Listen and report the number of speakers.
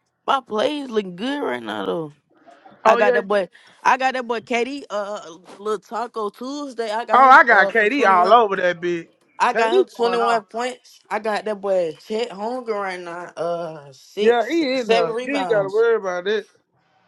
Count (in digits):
2